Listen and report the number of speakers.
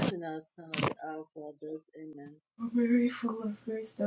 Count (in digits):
2